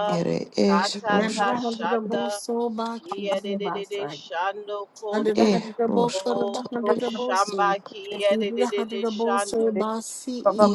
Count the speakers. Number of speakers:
three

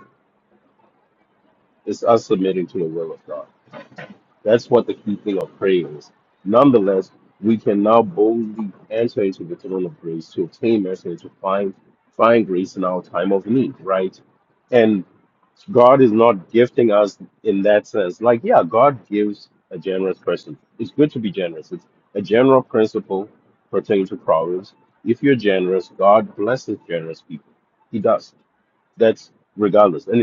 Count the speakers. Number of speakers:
one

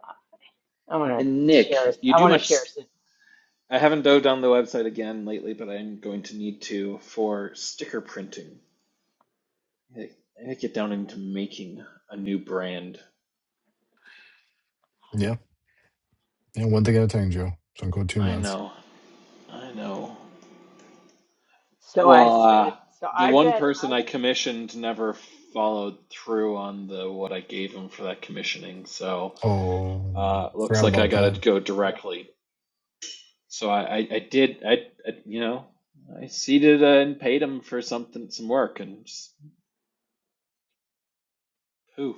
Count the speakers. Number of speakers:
three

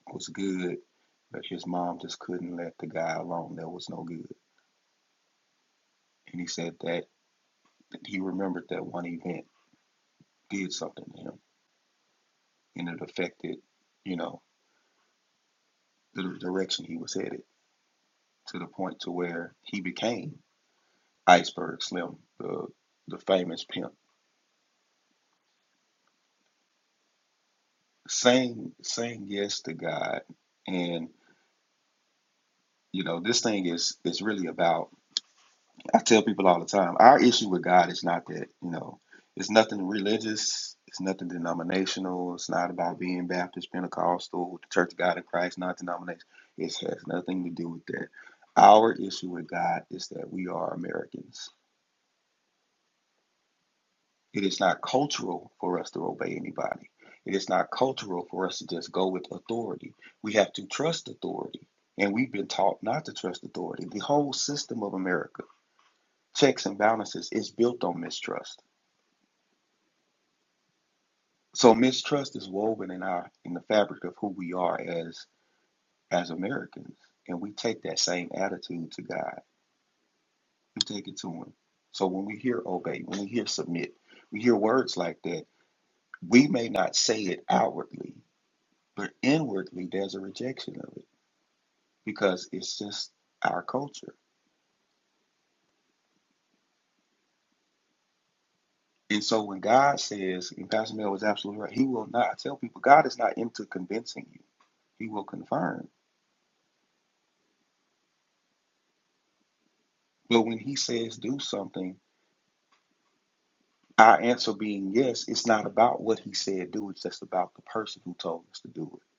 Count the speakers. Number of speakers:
one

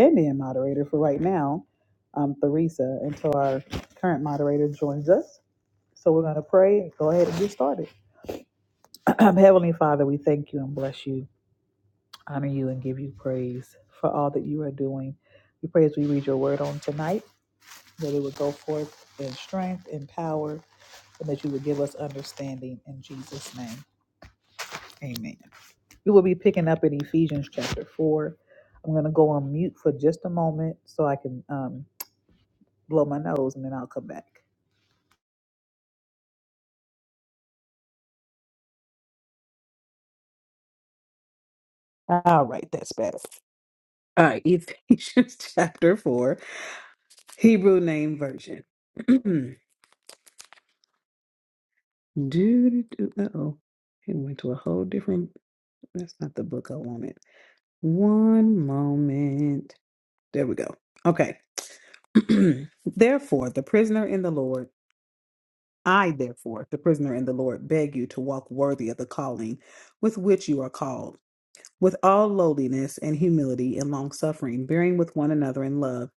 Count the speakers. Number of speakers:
one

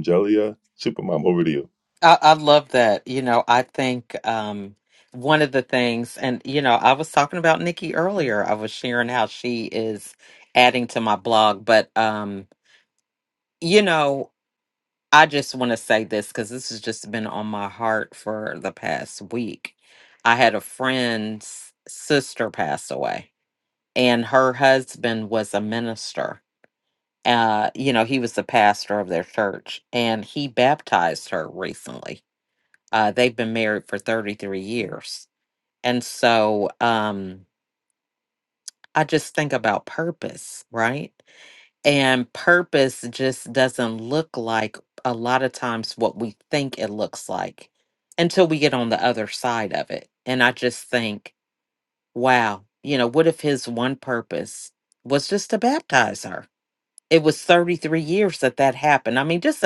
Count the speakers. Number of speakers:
two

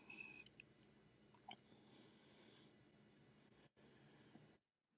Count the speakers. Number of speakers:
zero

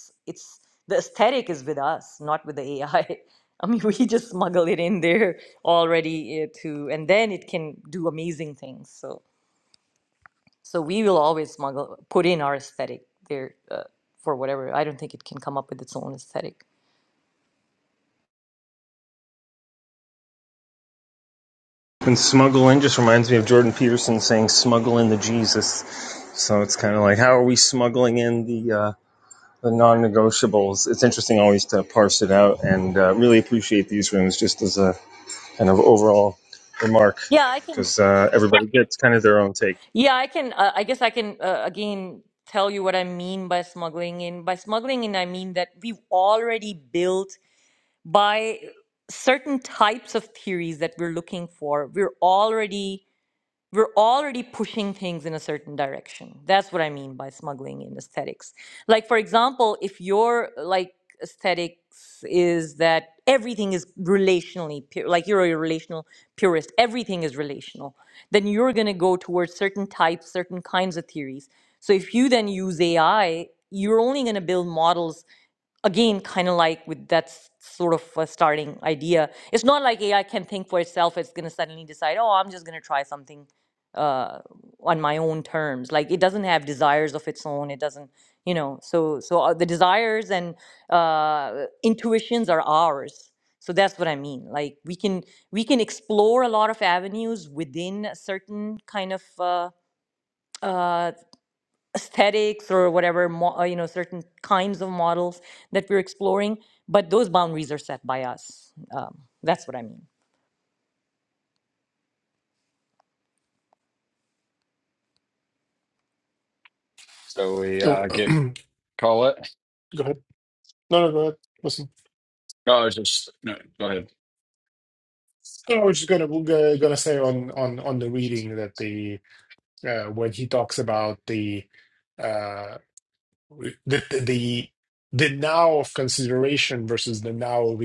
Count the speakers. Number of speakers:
four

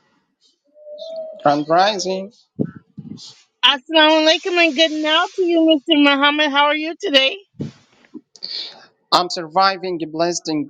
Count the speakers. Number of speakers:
two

